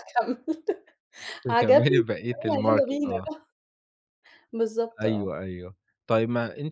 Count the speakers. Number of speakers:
2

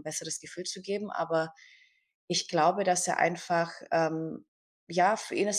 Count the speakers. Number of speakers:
1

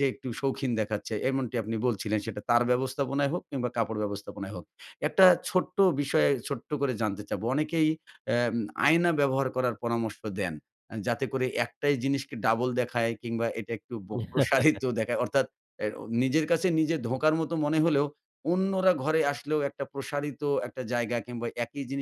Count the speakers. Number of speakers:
1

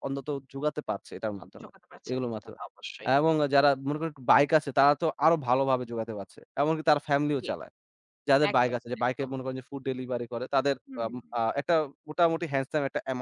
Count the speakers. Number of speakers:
2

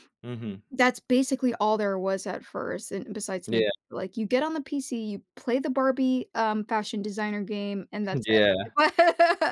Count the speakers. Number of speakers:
2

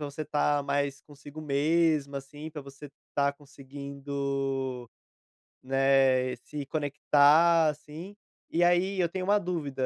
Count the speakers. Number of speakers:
1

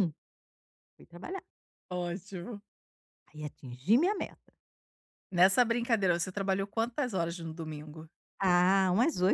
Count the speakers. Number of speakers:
2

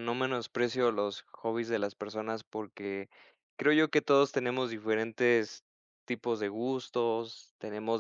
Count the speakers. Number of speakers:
1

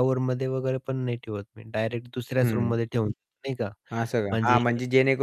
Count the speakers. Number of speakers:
2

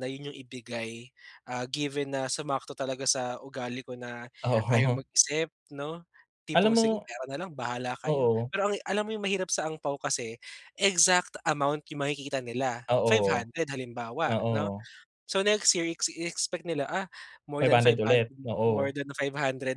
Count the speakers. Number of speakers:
2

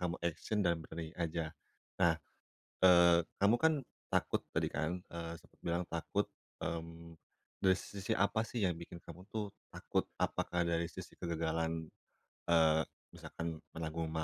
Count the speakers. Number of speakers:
1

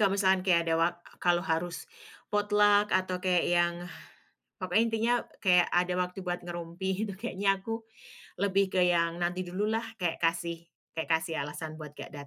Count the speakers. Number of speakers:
1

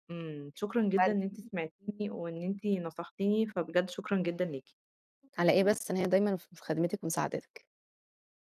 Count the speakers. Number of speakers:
2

